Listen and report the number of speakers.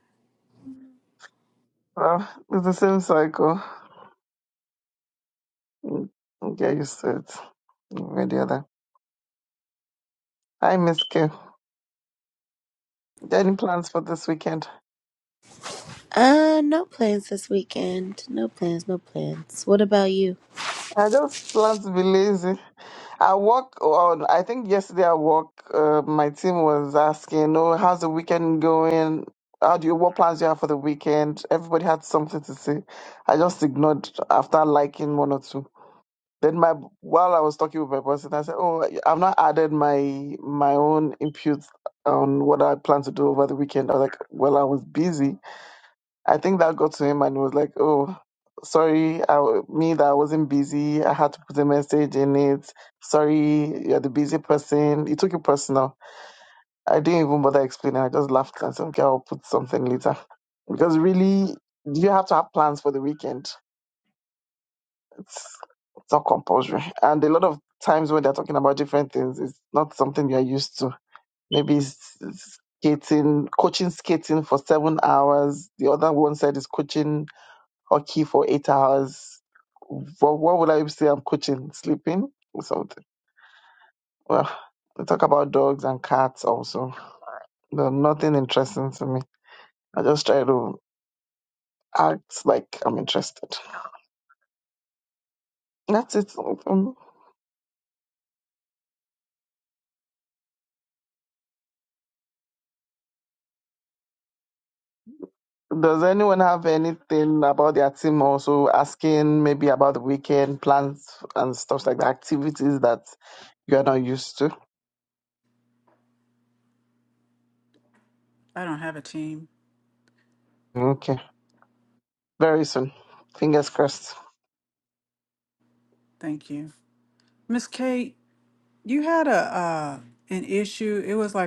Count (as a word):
three